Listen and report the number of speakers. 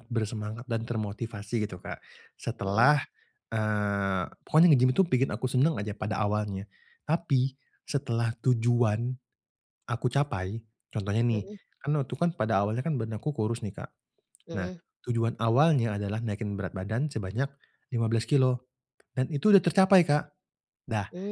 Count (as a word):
two